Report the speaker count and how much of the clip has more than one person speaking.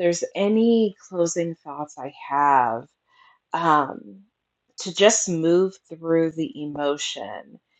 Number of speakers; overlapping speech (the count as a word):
one, no overlap